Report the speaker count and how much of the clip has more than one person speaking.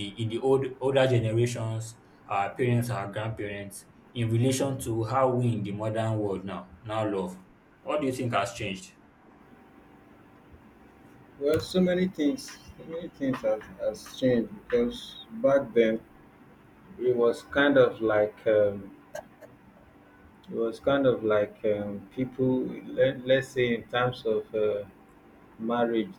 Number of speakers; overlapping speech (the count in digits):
2, no overlap